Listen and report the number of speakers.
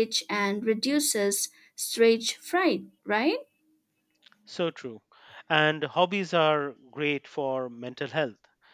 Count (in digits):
2